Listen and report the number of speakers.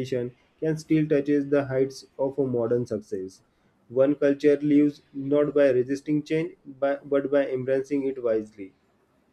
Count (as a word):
one